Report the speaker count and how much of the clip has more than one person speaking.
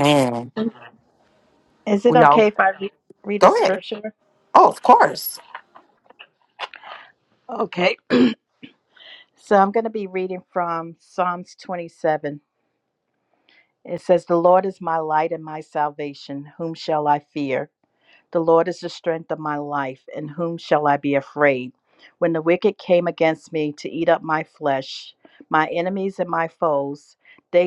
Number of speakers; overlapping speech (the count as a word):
two, about 3%